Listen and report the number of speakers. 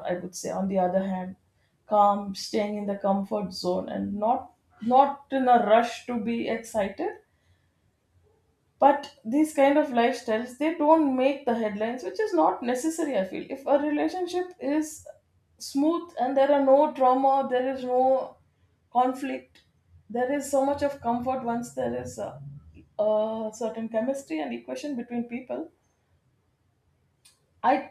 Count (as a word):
one